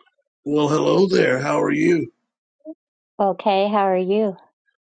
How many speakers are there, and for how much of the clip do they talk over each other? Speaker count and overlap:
2, no overlap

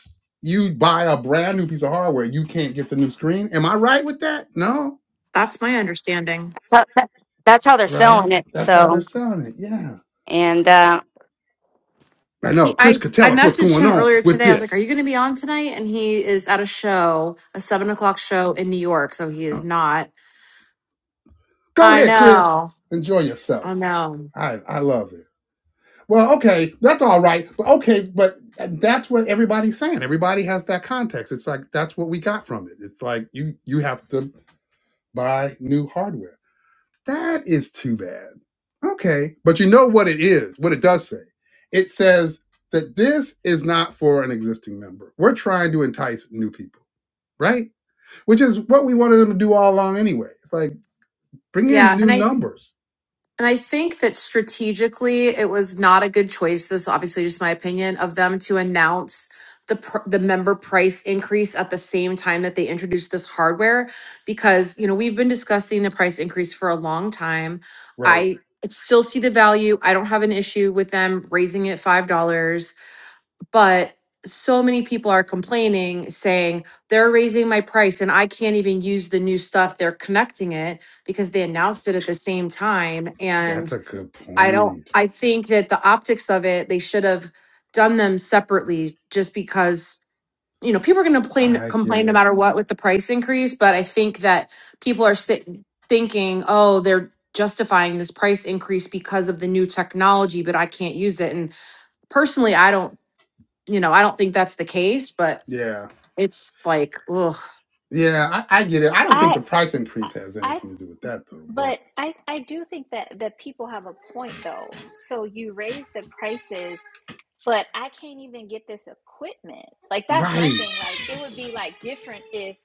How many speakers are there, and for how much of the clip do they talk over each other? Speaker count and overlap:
4, about 6%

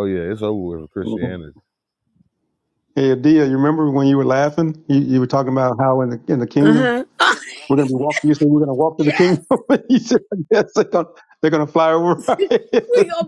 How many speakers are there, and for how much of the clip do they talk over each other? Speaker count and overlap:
3, about 5%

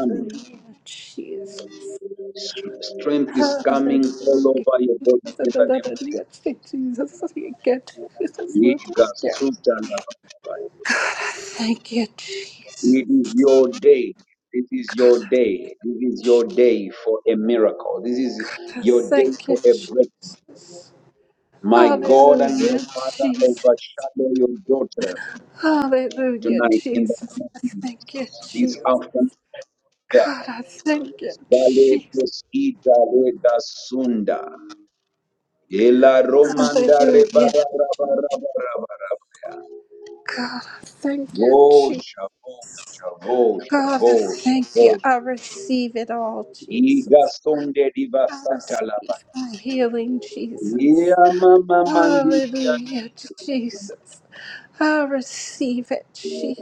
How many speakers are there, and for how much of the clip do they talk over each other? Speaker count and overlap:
2, about 23%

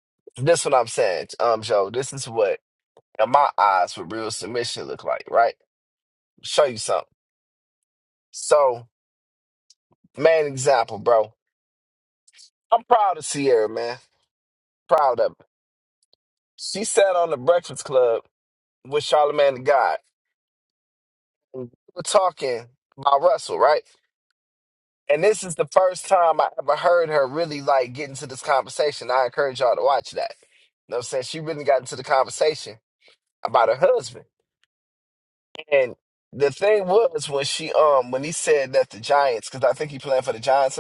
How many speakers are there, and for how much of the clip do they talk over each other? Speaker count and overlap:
1, no overlap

